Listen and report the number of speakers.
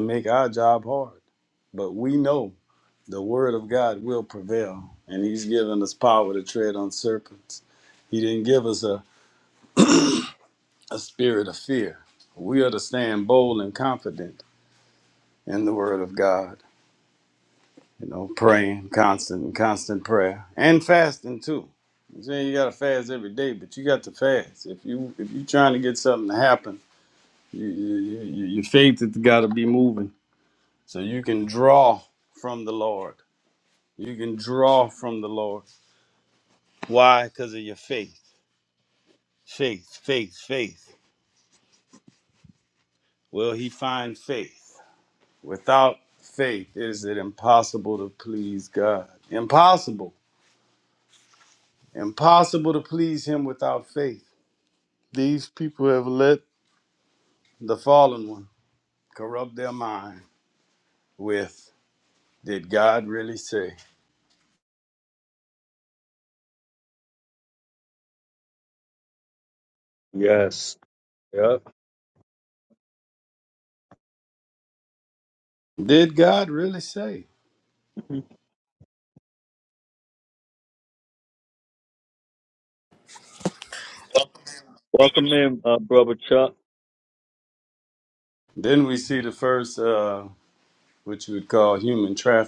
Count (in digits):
2